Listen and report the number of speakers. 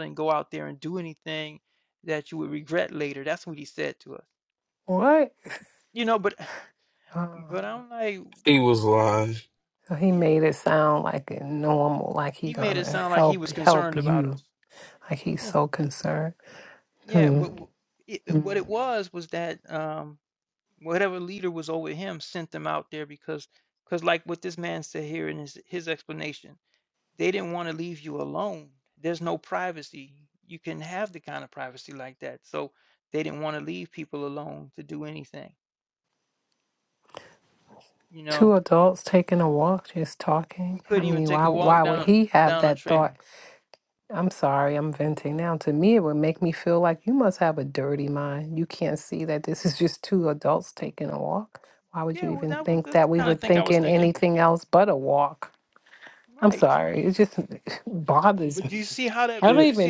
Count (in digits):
3